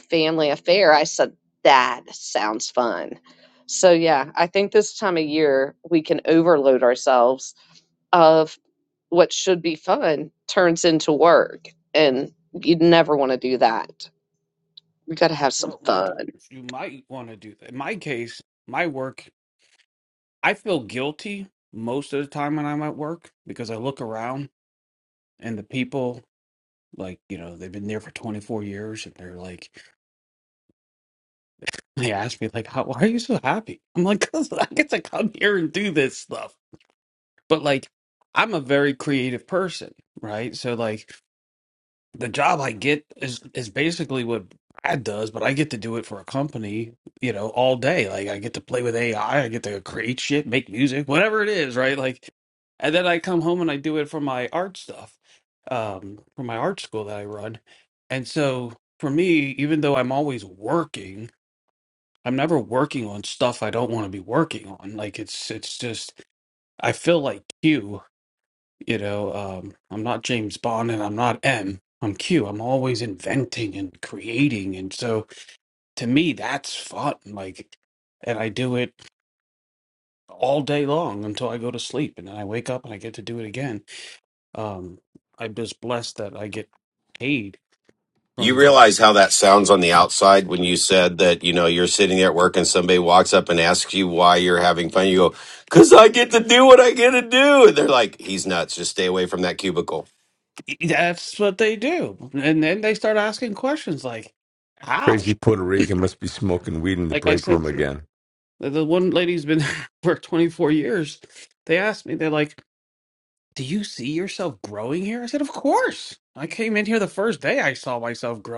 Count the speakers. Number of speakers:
4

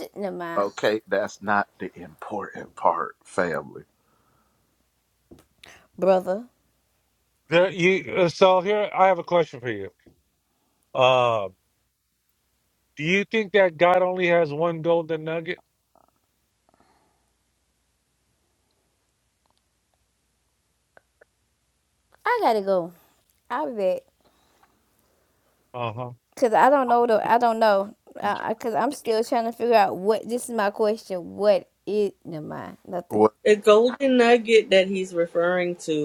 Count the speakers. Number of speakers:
4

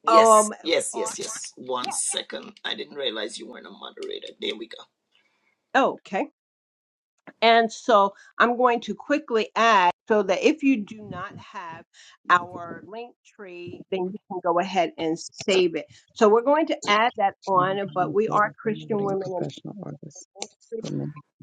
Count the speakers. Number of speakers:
3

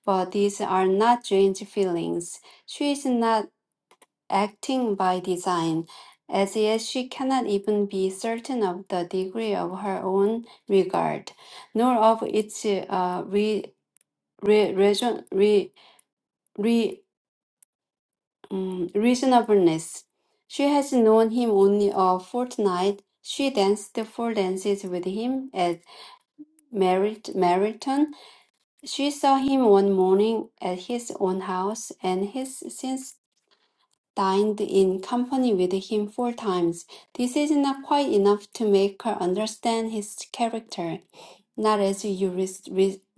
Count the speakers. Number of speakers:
1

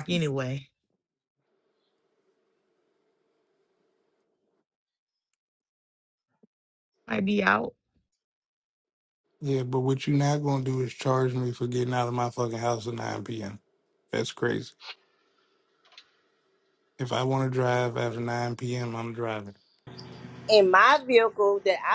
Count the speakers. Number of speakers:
3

